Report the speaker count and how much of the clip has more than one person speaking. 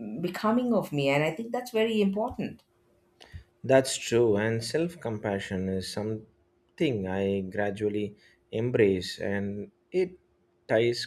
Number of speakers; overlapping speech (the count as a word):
two, no overlap